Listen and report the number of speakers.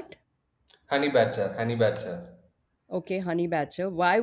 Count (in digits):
2